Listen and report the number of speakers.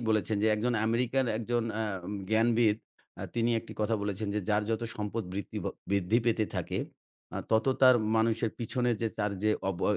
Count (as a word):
one